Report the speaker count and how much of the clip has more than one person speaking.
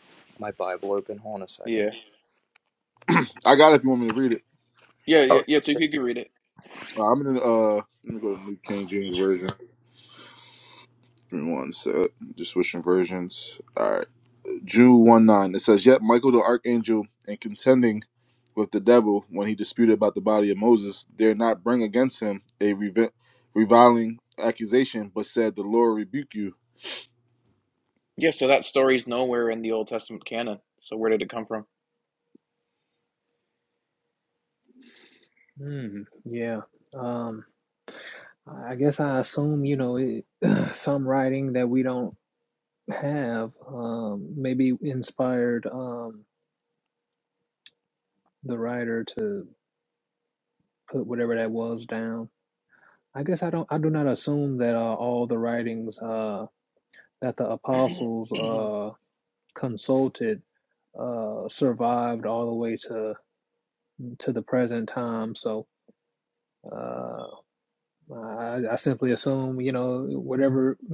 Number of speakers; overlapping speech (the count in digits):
4, about 1%